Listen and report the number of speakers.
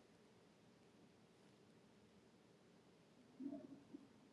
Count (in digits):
0